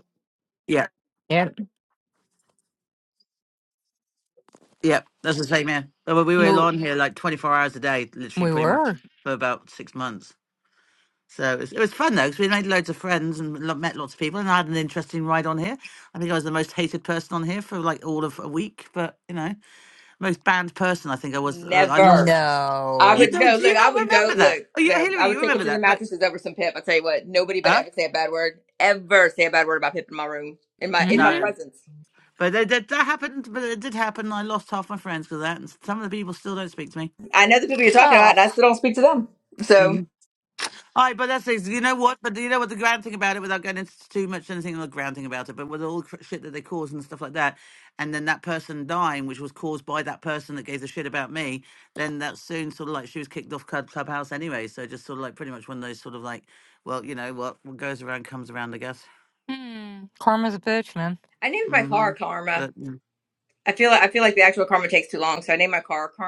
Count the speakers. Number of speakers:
three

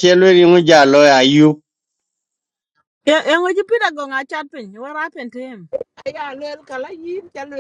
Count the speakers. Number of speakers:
three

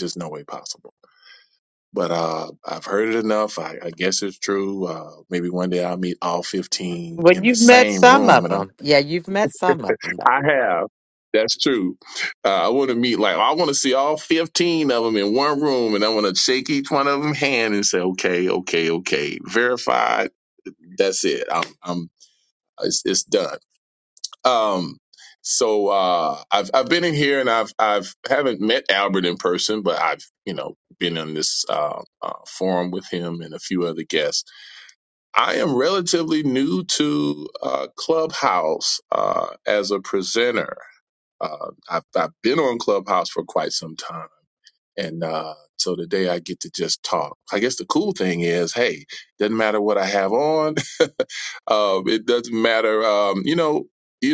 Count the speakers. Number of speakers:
two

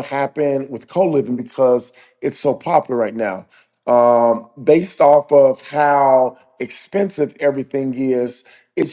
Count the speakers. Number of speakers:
one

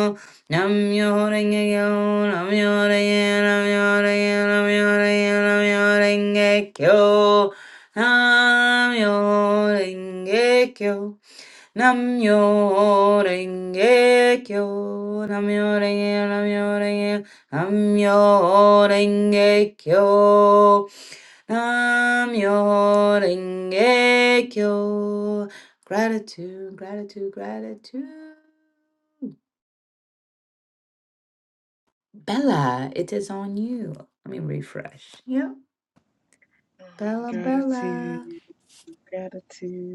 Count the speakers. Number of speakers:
two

